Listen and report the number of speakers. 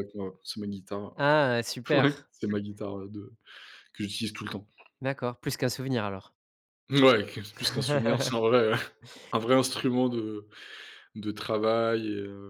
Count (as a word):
two